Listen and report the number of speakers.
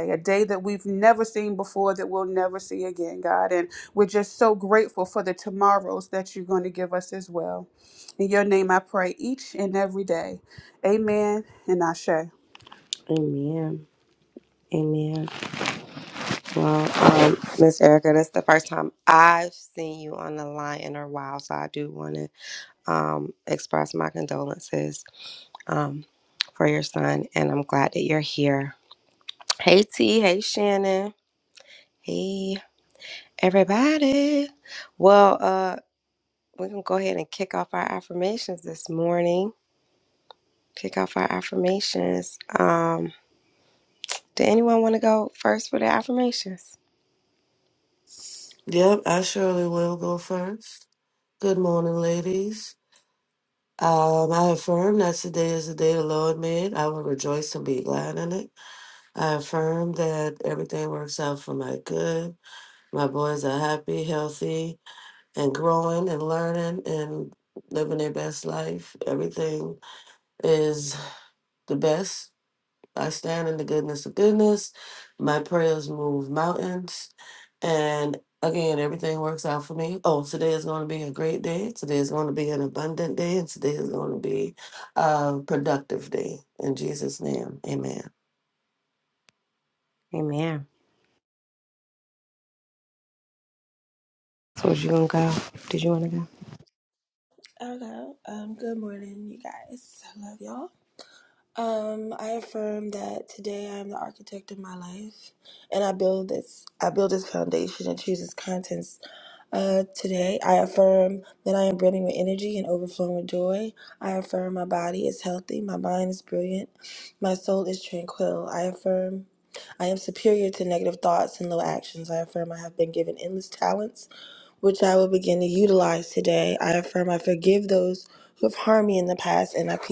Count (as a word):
four